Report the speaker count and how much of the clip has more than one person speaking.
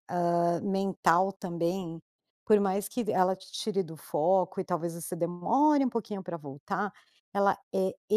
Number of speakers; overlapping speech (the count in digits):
1, no overlap